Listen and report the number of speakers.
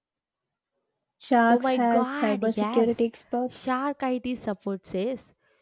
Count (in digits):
2